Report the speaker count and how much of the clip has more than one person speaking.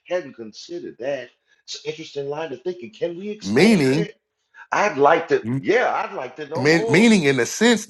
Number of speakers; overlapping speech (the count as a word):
two, about 15%